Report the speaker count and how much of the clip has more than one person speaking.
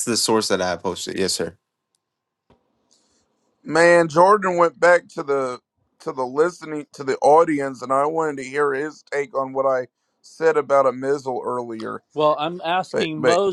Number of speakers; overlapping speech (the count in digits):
3, about 4%